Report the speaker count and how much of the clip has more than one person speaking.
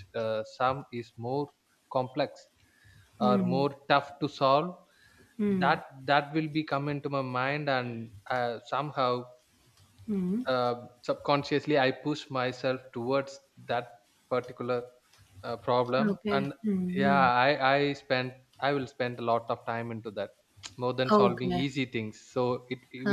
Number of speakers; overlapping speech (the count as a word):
two, about 10%